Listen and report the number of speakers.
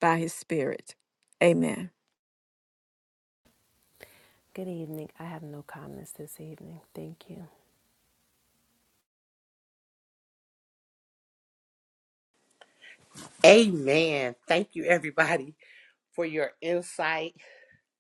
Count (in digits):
3